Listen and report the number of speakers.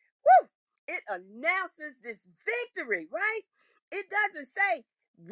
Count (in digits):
1